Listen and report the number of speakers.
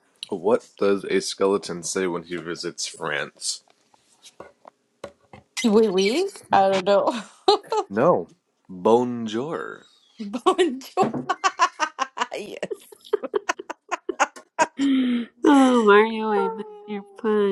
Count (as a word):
three